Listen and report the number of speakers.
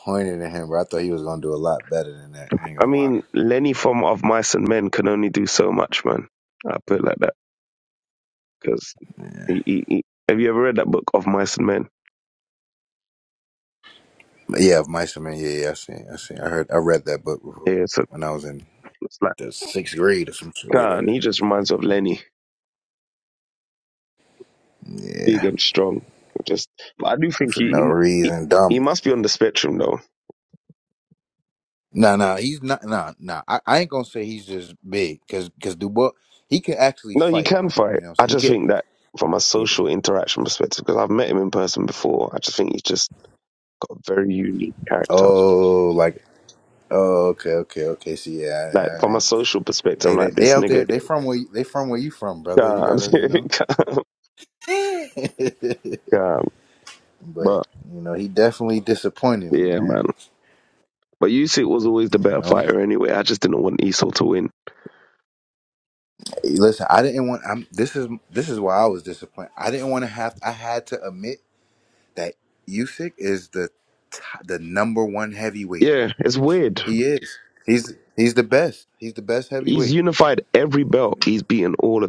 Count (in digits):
2